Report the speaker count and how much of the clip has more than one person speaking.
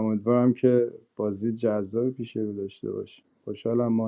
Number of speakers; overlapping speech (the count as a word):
one, no overlap